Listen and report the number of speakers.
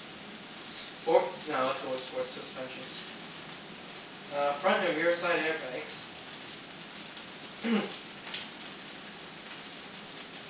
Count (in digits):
1